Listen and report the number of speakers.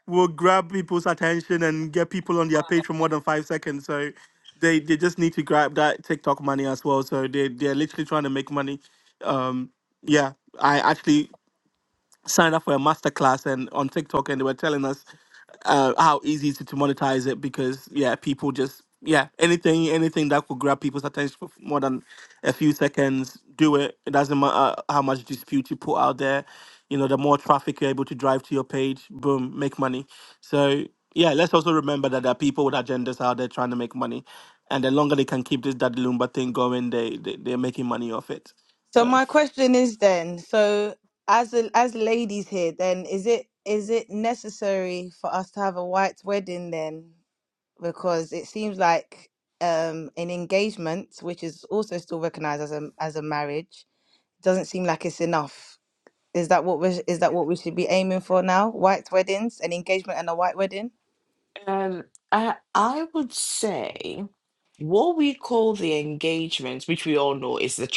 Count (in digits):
3